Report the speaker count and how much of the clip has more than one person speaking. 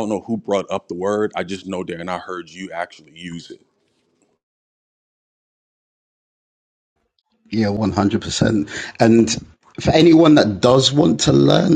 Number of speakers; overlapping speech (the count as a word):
two, no overlap